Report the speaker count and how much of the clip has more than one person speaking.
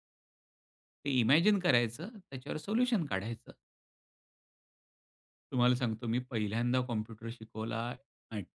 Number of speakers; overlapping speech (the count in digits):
1, no overlap